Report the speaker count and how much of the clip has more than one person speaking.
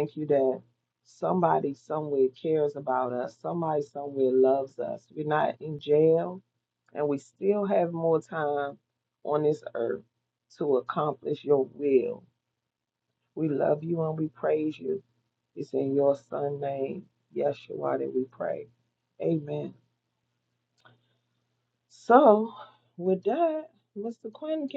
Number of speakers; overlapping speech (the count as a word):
one, no overlap